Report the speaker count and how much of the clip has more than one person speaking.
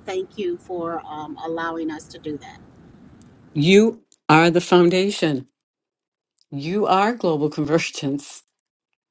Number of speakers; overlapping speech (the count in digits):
2, no overlap